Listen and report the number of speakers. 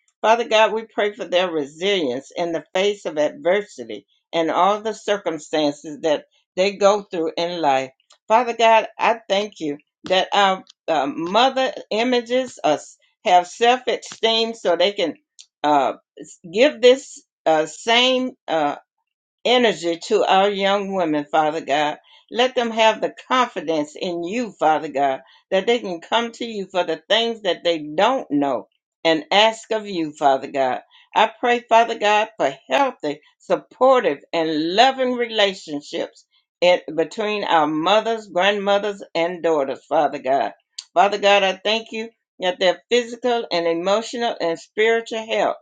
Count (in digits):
1